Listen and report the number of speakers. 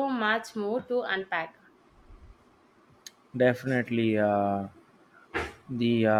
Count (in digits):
2